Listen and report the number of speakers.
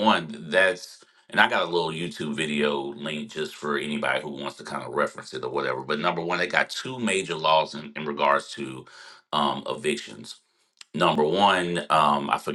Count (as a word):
one